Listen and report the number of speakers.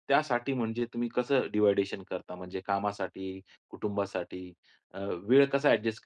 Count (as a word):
one